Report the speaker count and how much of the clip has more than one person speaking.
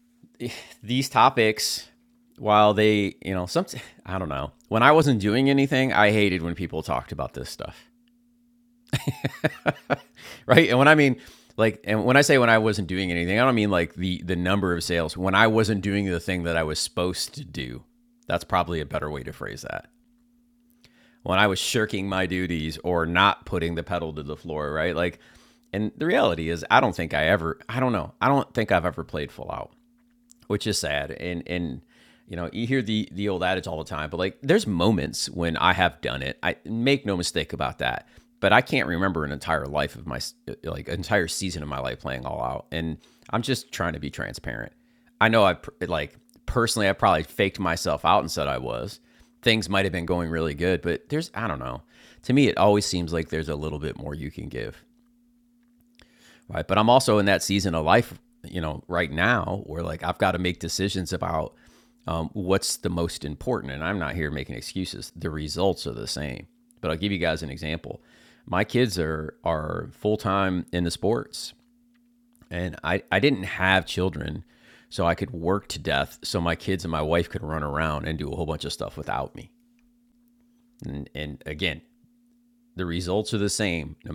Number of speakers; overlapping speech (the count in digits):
1, no overlap